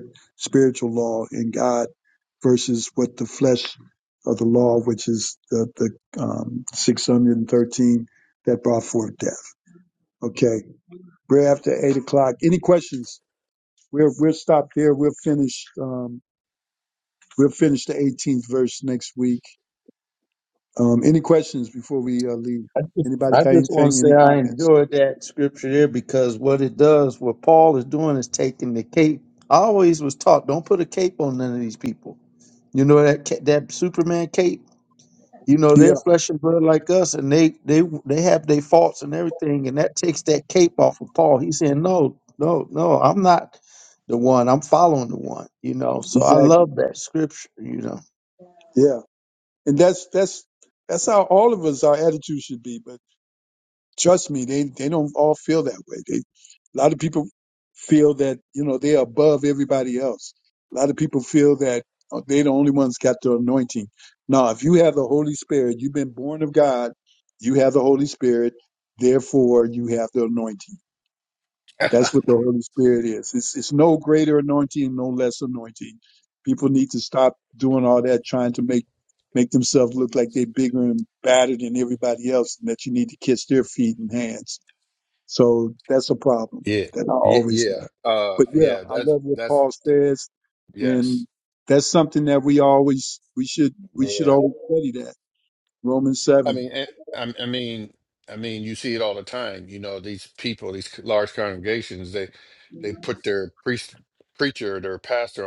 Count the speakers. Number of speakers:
3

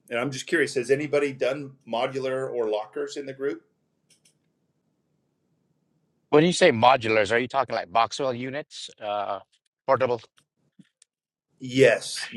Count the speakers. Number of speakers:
2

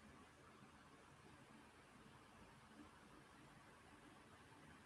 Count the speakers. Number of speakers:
0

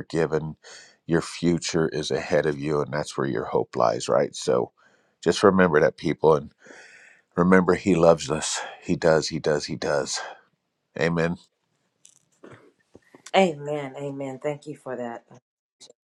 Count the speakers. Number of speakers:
2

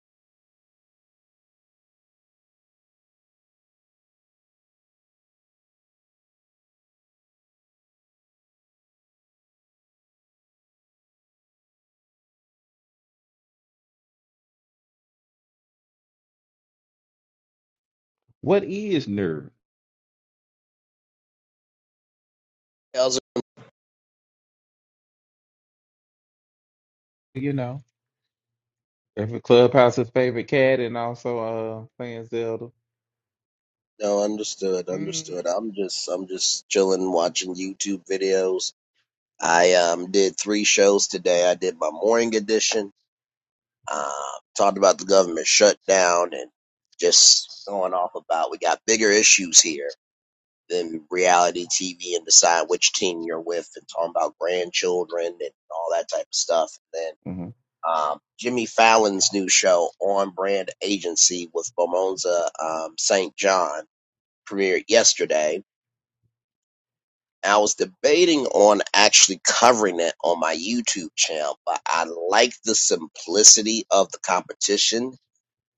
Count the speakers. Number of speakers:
2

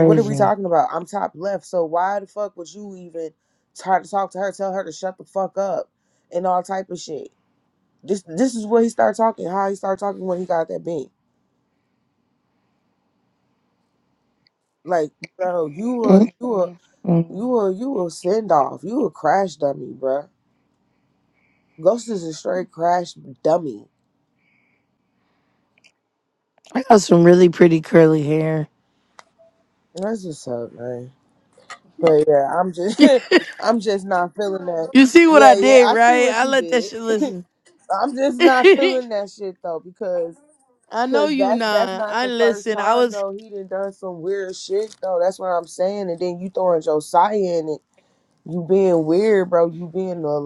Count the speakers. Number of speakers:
2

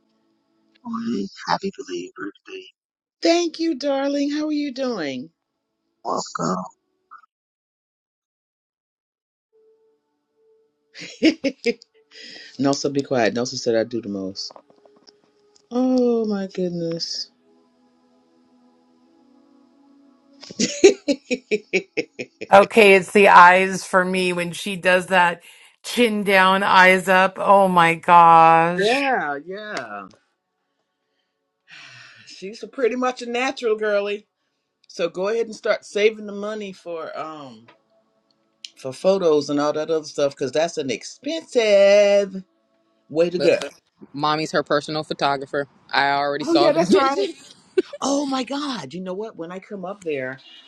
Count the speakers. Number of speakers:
4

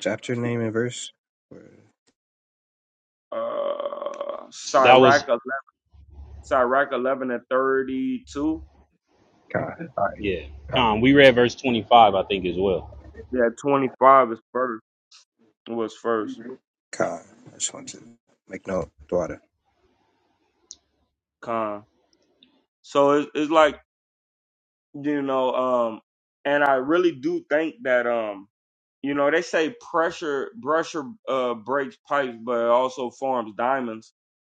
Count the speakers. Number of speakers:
3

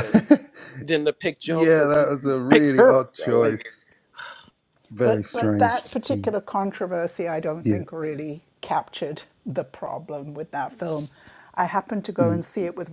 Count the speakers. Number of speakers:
3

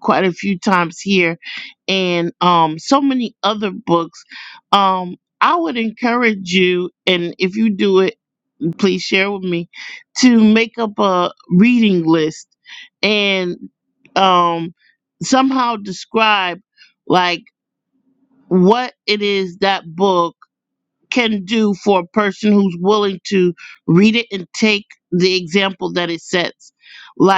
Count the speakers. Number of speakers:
1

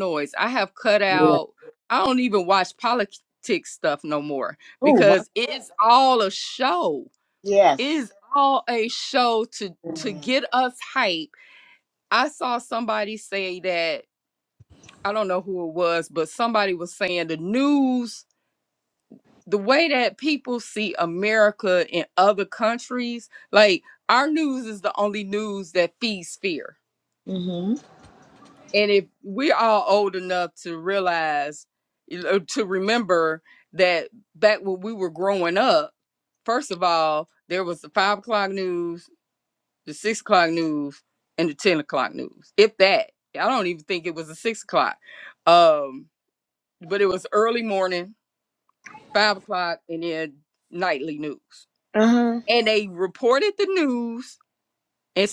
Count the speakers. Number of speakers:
2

